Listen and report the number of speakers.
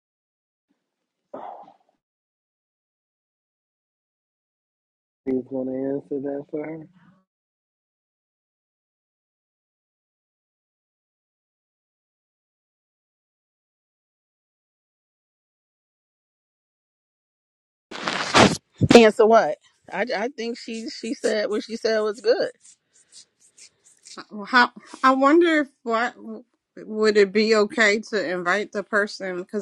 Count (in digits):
3